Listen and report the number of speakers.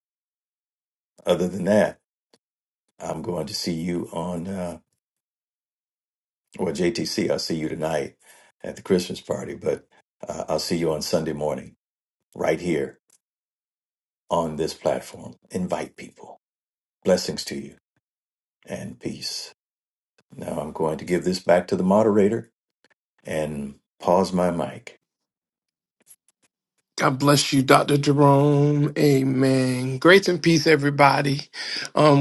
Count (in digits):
2